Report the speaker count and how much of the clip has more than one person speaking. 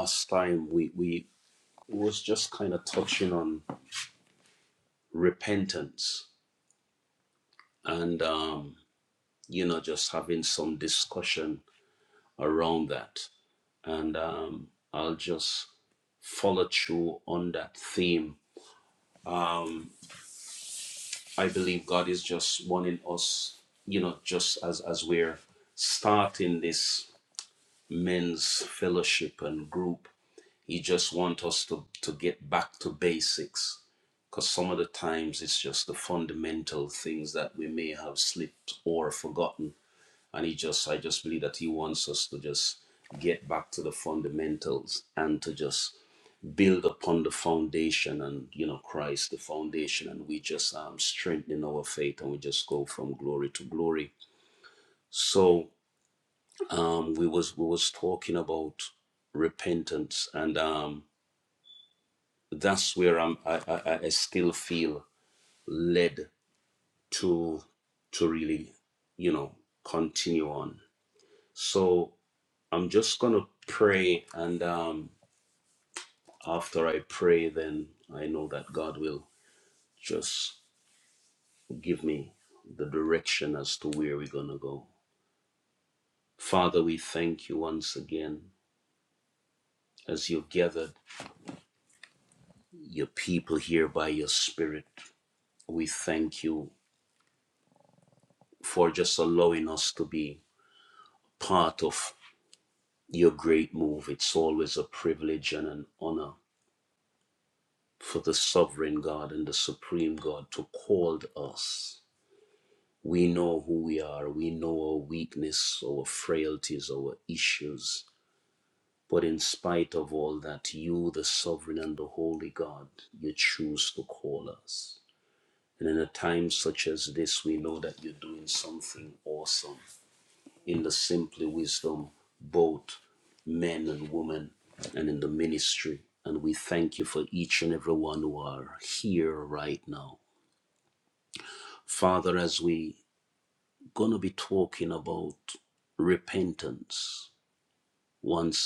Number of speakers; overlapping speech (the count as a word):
one, no overlap